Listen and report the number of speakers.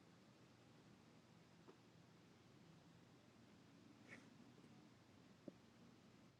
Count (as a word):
zero